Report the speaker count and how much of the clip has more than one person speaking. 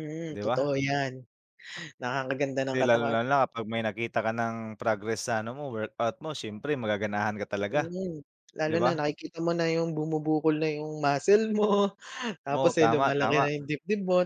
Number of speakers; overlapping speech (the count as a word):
two, about 16%